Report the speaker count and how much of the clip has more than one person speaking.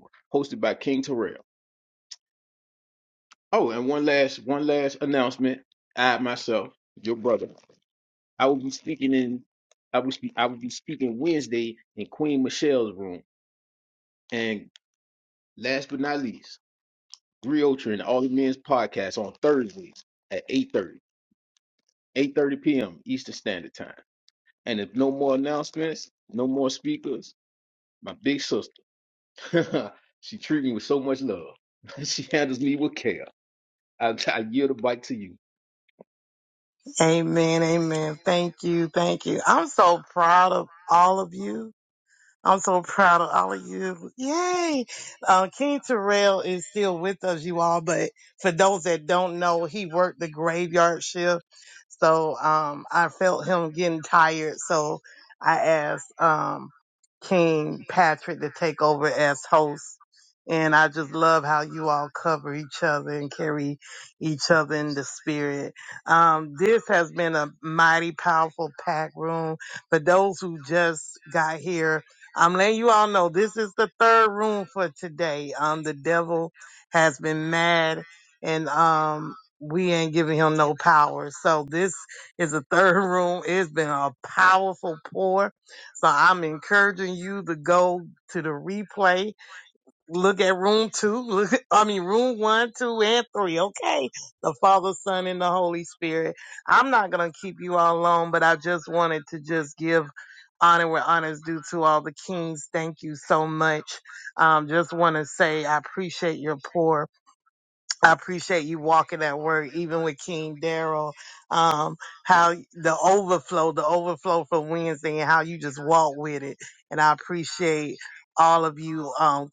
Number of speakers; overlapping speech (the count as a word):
two, no overlap